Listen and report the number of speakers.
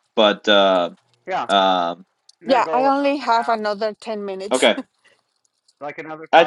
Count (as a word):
three